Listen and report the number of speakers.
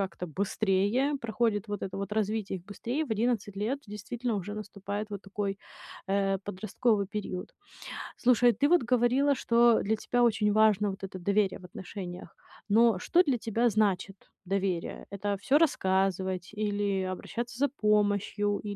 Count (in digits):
1